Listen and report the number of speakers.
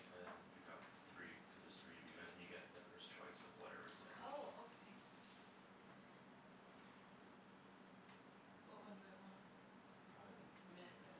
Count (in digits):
2